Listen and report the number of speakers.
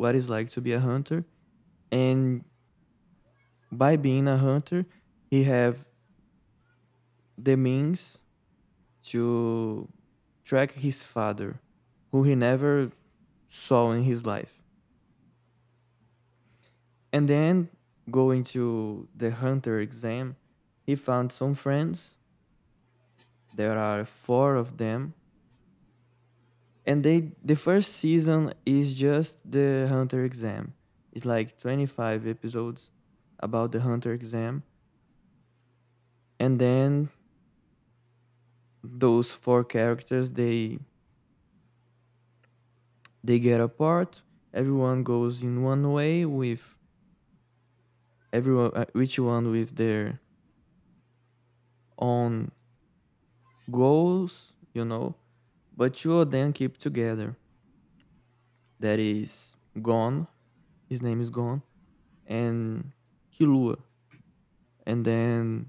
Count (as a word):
one